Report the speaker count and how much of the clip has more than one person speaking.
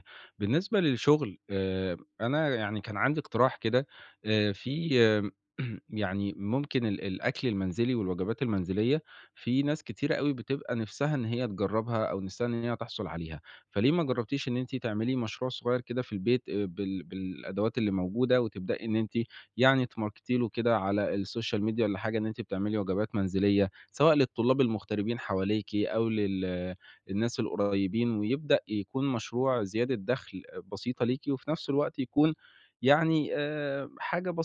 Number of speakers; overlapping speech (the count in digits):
1, no overlap